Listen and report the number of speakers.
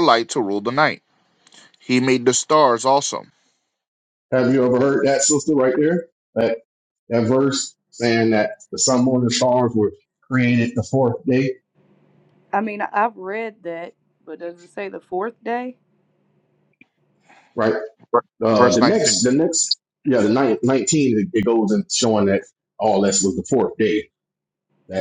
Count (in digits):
3